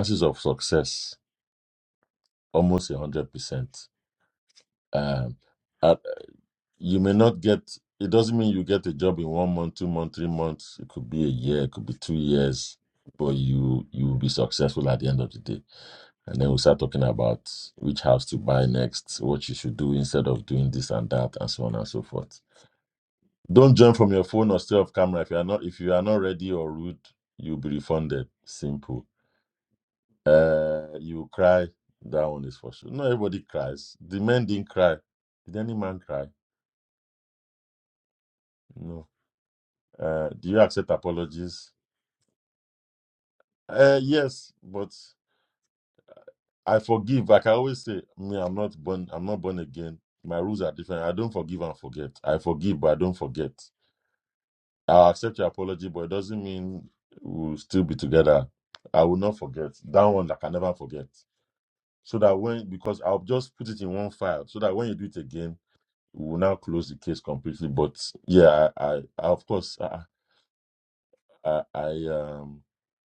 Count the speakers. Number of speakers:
one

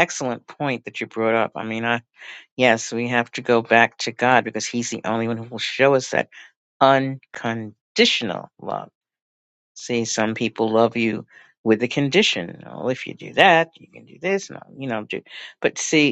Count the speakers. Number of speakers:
one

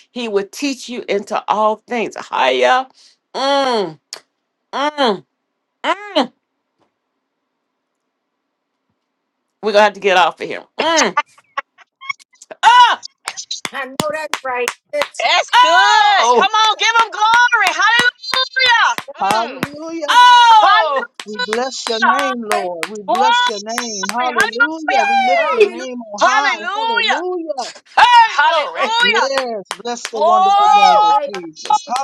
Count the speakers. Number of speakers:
four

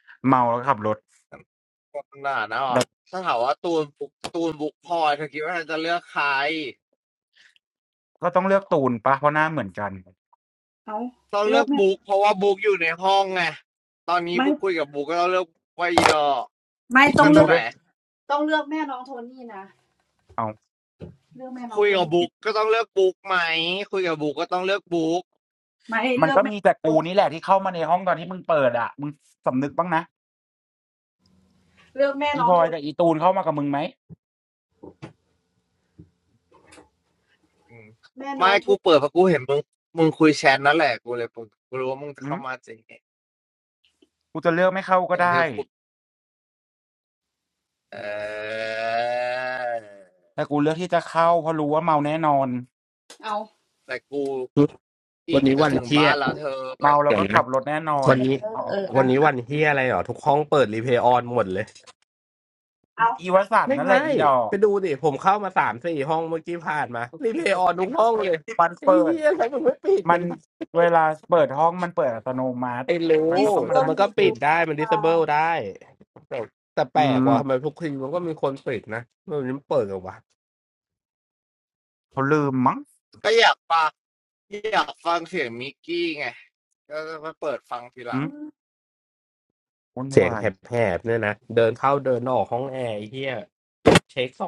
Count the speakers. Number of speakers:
four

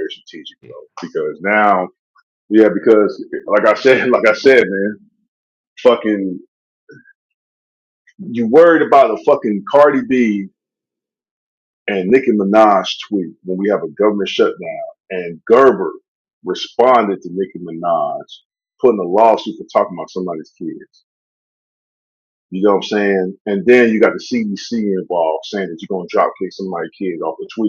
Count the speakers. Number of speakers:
one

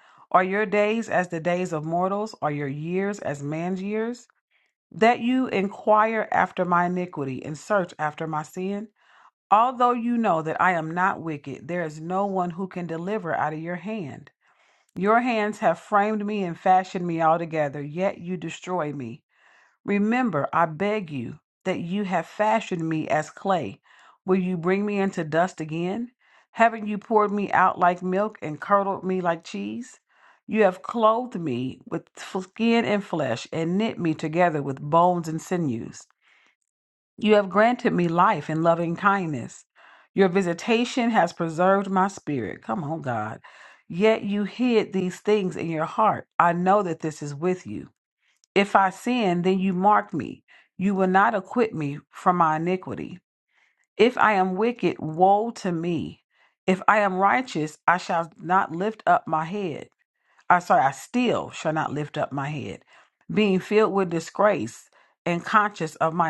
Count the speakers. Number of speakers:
one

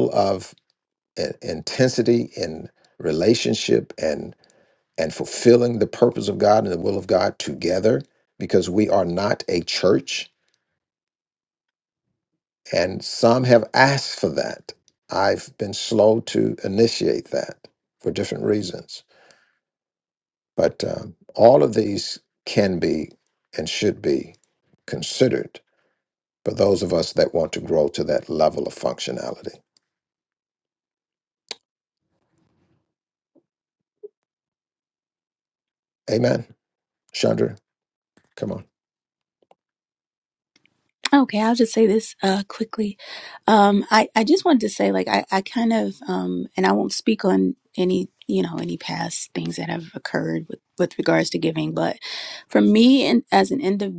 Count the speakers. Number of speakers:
two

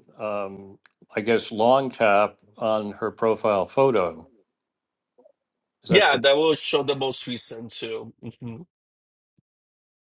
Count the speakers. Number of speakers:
two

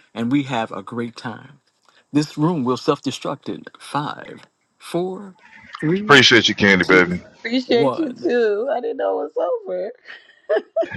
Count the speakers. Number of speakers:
three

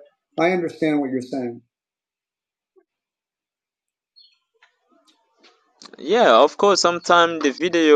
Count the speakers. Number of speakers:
two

